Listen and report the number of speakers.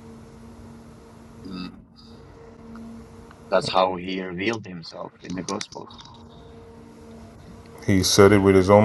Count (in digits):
2